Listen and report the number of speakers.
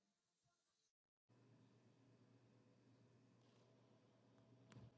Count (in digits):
0